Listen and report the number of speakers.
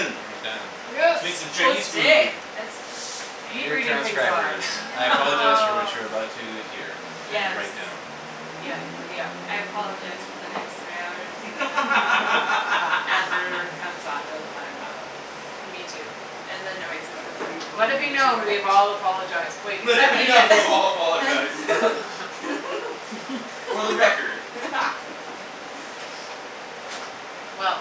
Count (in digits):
4